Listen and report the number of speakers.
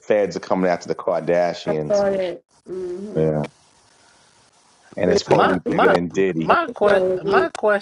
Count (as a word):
three